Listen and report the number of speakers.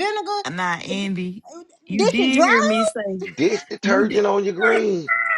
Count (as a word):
three